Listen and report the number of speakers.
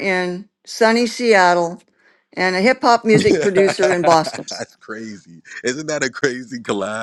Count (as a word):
two